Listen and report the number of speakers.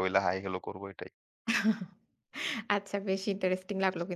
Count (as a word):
two